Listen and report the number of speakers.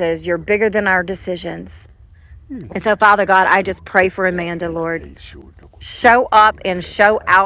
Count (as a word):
one